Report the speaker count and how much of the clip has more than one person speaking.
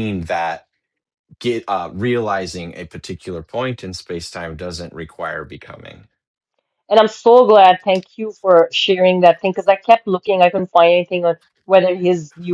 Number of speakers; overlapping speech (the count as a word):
two, no overlap